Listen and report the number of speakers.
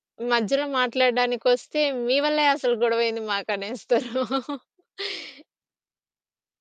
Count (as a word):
one